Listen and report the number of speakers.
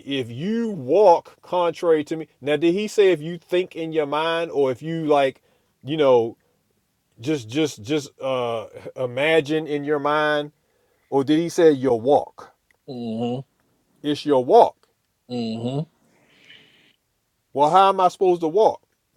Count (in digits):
2